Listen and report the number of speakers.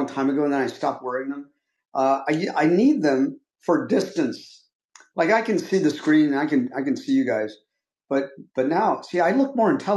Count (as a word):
one